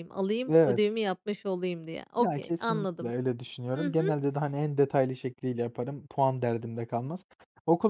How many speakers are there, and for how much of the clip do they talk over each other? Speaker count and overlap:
2, about 21%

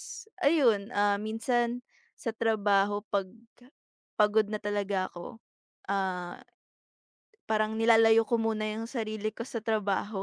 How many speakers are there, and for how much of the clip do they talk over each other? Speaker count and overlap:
1, no overlap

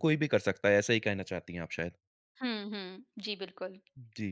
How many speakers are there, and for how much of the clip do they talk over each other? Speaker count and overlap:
2, no overlap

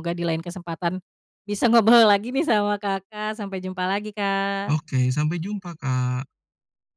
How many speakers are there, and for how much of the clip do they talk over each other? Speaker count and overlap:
2, about 1%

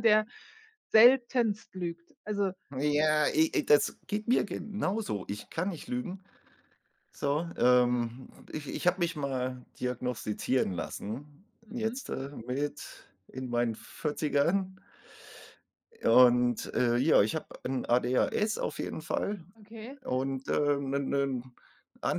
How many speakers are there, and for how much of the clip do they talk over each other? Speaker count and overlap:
2, about 1%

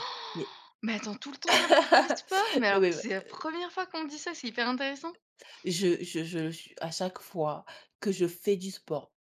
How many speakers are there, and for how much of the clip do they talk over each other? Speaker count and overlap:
2, about 8%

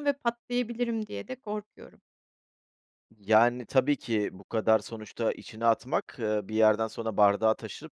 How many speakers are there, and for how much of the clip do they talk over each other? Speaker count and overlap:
2, no overlap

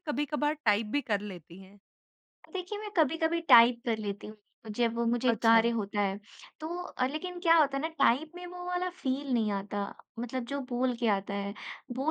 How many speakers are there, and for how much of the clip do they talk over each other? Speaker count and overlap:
2, about 3%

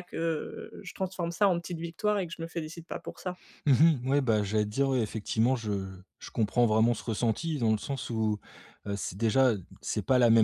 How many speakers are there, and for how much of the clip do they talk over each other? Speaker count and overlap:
2, no overlap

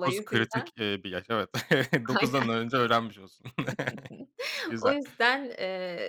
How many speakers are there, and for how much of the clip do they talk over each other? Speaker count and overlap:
2, about 14%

